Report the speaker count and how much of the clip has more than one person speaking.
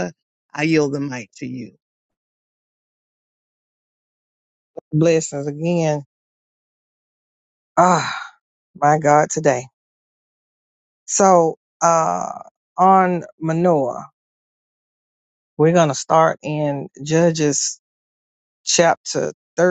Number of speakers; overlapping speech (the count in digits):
2, no overlap